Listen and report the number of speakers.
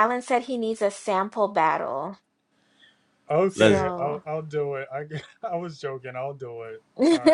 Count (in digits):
2